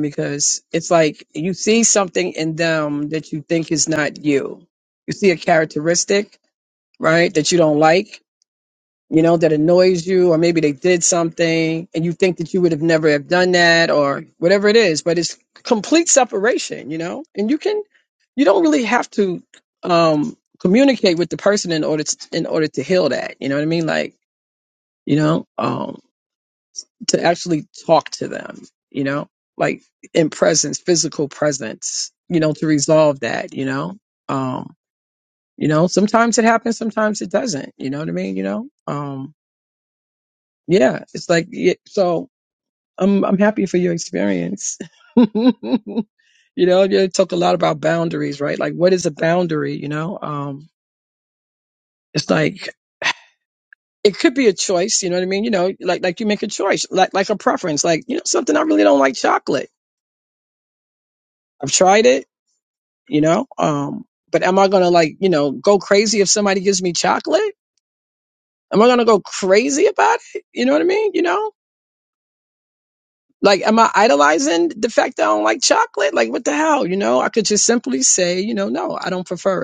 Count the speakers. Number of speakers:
one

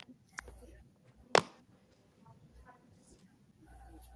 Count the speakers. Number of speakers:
zero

